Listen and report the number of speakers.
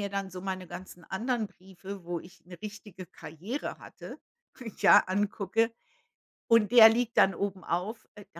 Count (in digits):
1